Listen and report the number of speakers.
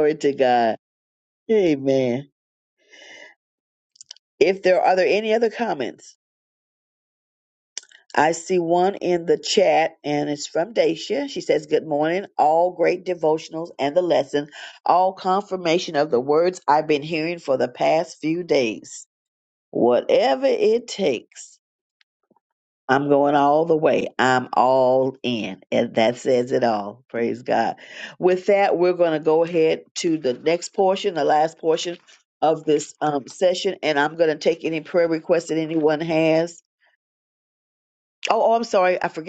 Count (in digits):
1